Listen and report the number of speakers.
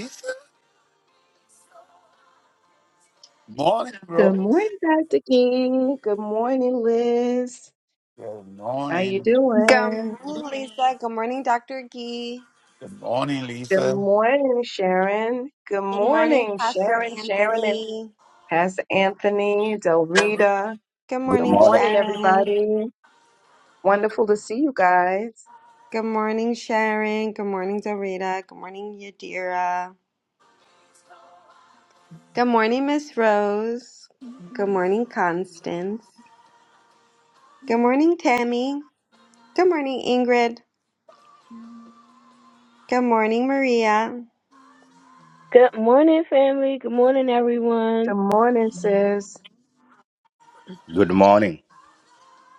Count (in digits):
5